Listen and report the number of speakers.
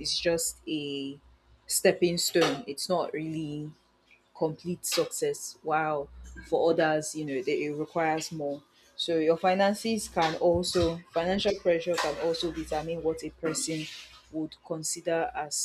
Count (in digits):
1